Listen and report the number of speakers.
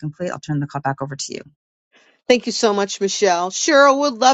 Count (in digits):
2